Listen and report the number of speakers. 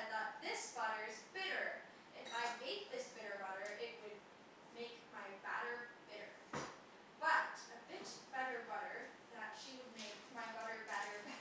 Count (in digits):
1